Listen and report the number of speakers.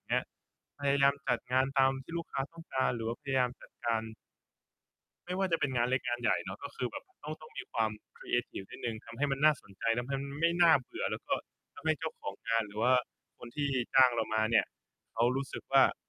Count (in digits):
1